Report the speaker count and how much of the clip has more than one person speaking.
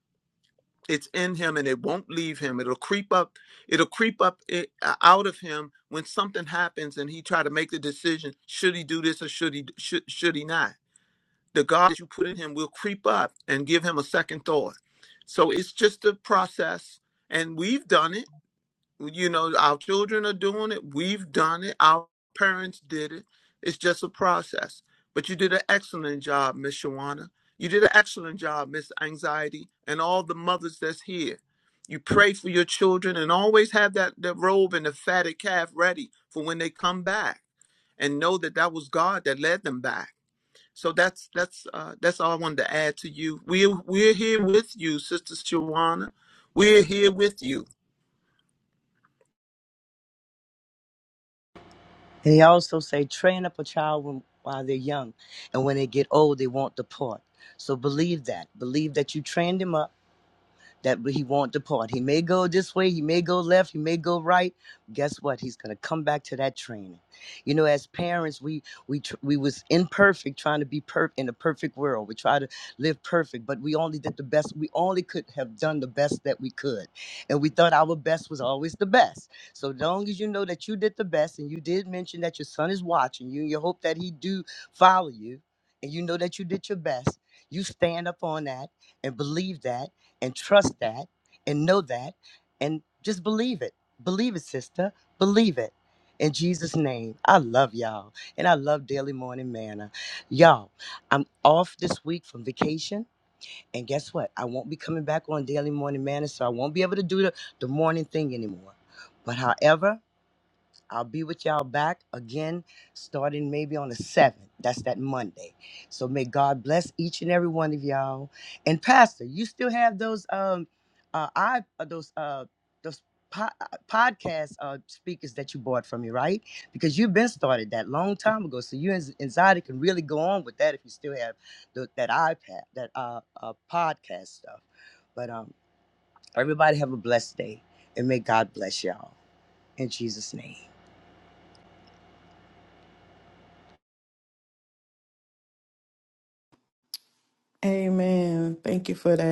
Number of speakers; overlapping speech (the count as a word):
three, no overlap